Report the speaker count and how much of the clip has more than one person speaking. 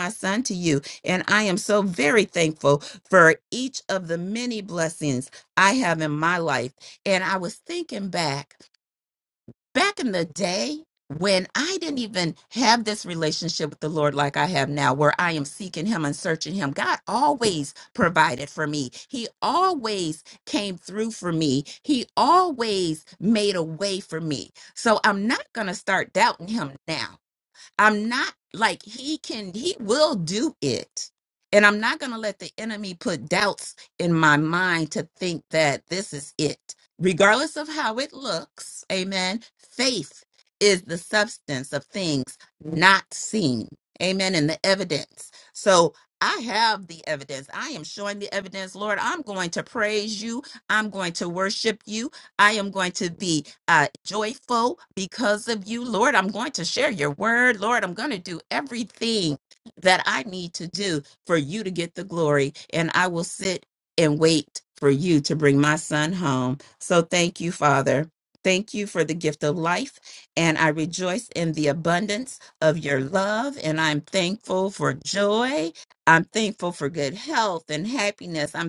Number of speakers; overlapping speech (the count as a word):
one, no overlap